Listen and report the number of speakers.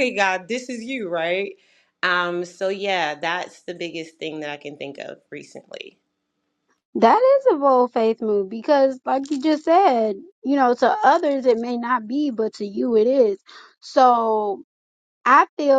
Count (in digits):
2